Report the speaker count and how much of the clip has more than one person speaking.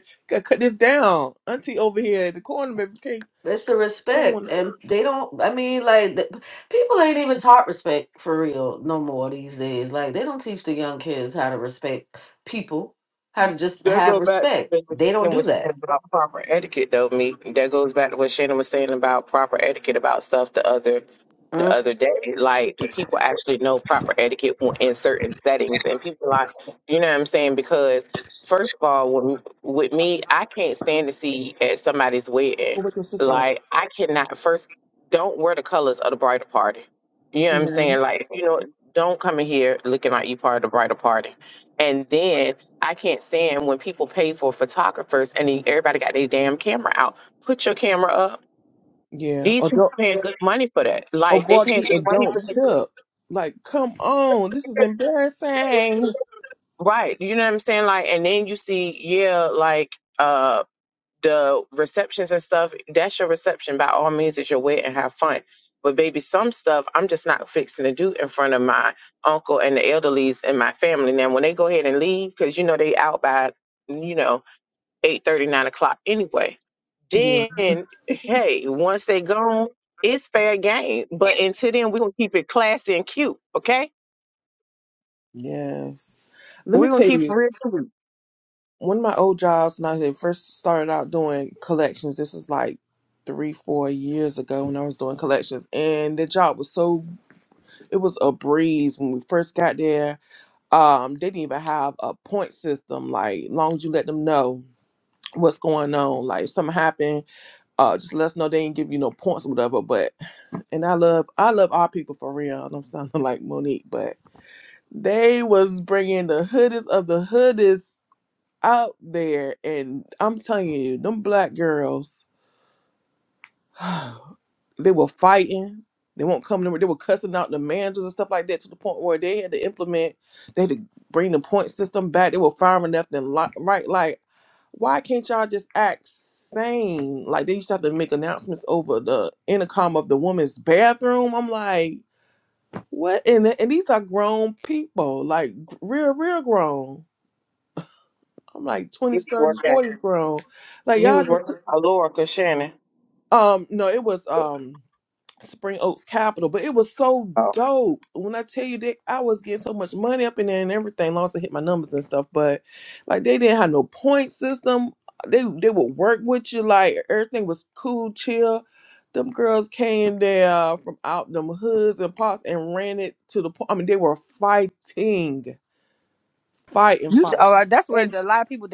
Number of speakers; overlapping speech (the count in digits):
4, about 4%